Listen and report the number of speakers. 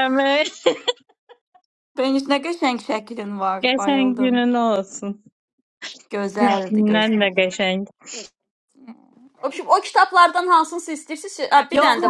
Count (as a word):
three